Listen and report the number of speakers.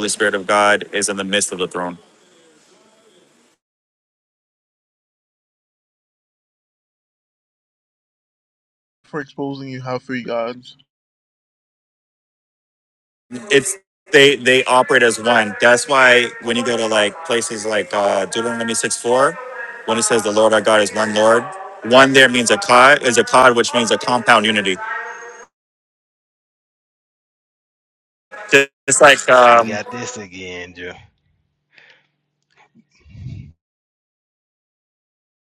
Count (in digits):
3